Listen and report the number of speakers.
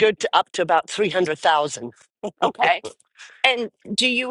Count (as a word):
two